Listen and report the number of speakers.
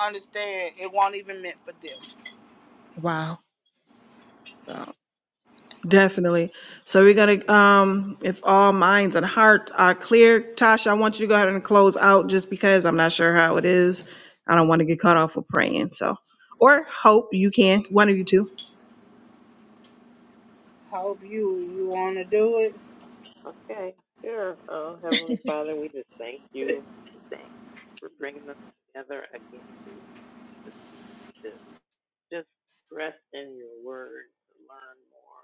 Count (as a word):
three